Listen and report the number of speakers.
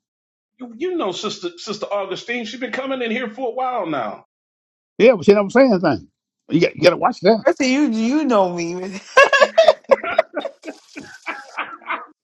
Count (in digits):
3